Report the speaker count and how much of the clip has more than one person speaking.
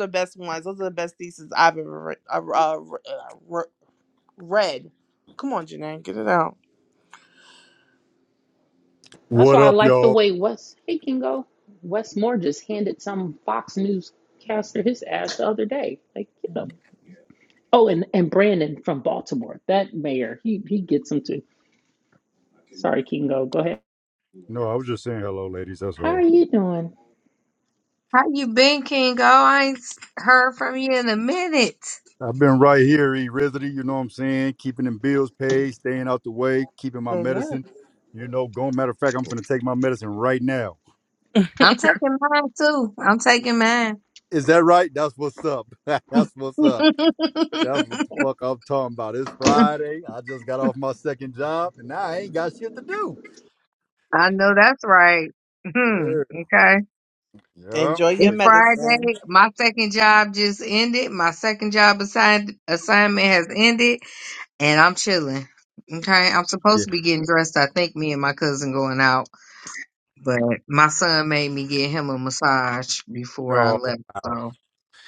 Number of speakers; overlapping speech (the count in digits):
4, about 6%